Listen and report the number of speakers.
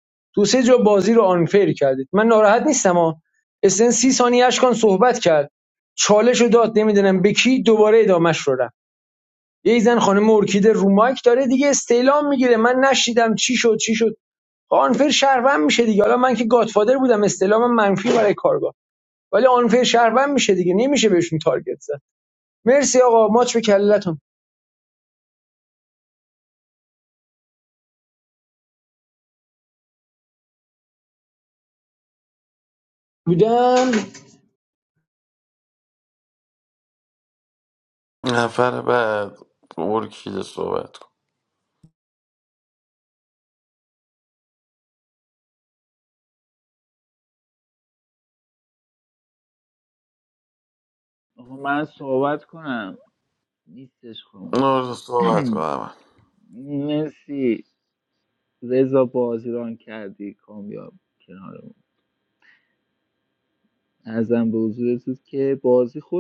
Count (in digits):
3